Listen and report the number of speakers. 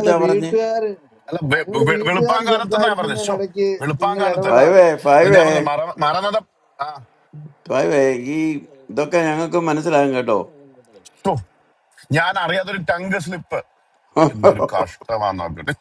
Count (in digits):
3